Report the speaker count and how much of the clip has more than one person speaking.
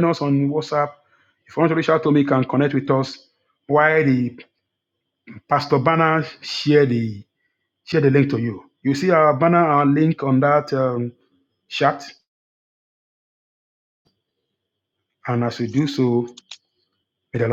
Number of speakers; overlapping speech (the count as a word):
one, no overlap